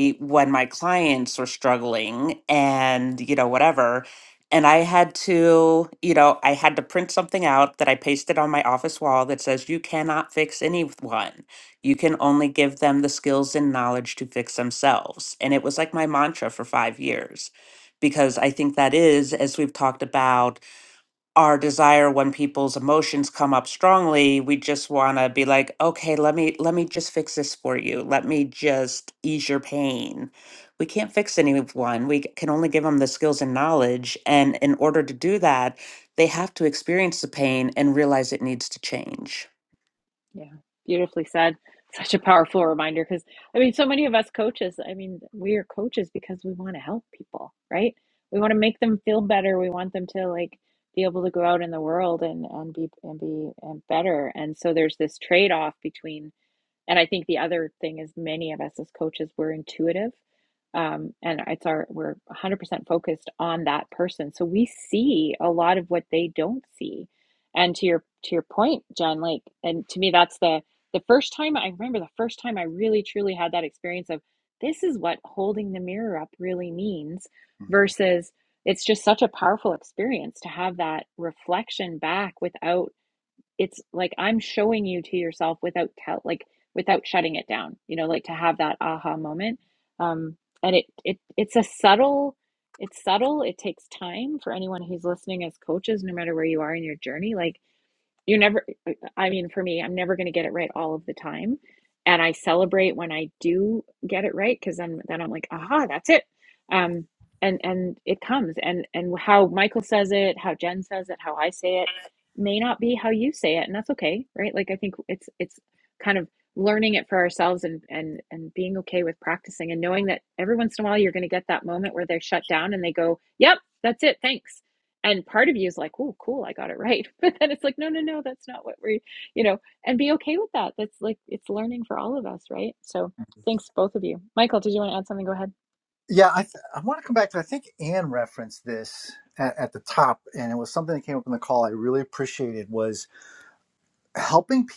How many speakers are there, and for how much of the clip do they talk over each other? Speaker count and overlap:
3, no overlap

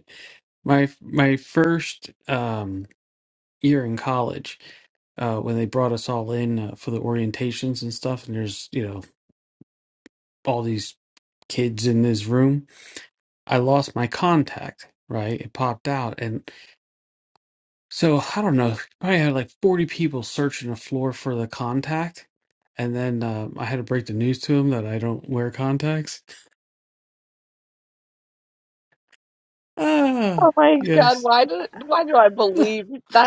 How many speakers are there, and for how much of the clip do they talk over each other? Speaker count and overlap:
2, about 1%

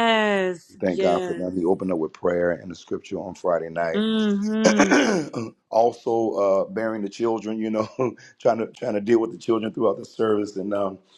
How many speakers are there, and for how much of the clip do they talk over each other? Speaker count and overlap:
2, about 5%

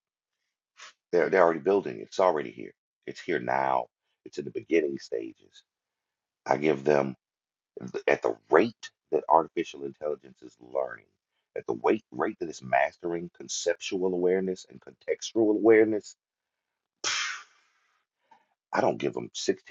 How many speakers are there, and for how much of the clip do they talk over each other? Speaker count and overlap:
1, no overlap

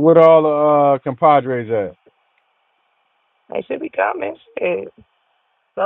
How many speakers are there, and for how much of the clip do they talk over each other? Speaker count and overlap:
2, no overlap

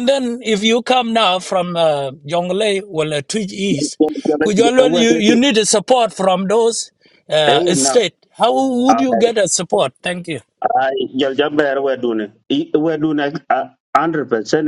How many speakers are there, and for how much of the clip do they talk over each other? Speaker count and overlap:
2, about 11%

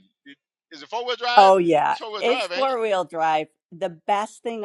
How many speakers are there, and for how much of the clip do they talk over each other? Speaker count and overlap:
2, about 21%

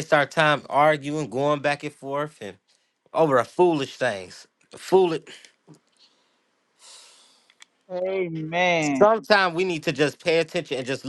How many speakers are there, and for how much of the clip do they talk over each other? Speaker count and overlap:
2, no overlap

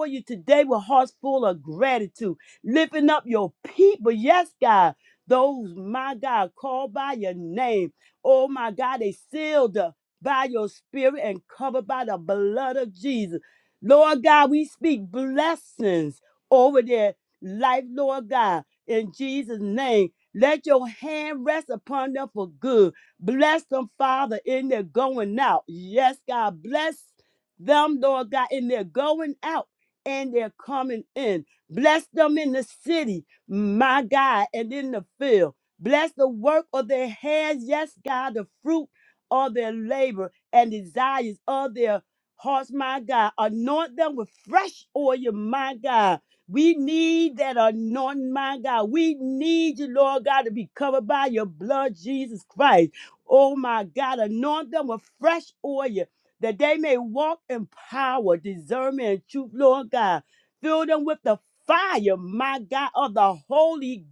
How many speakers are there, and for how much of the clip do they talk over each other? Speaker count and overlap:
1, no overlap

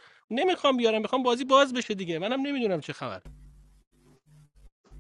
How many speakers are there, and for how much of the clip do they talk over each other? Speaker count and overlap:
1, no overlap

